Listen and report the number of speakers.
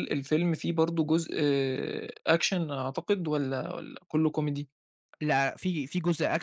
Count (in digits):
2